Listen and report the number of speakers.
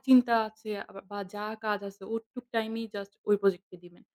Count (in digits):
1